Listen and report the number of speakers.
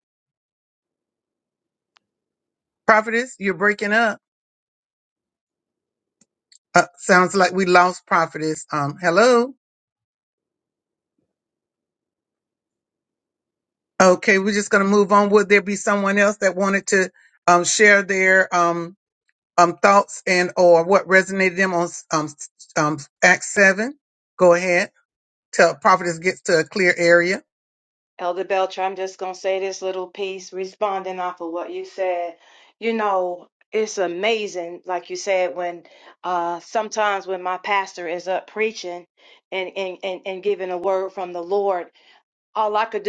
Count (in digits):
2